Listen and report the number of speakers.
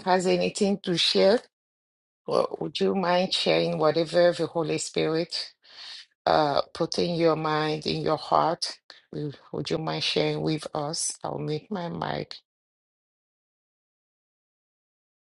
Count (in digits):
1